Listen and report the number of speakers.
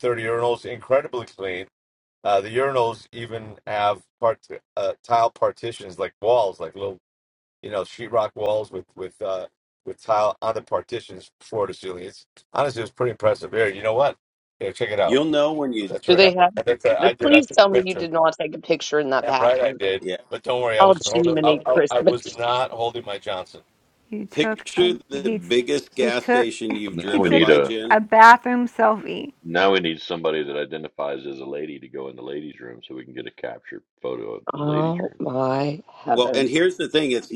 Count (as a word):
five